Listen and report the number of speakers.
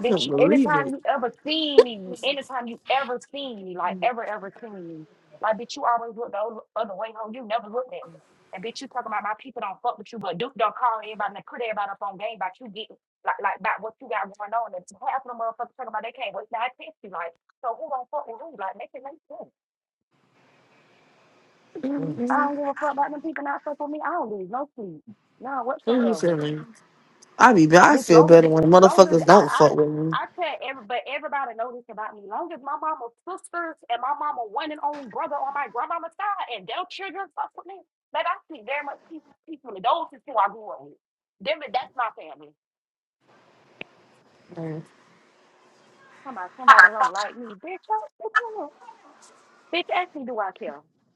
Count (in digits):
2